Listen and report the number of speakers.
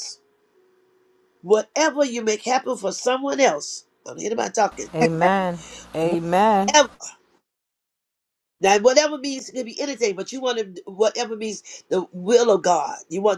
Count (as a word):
two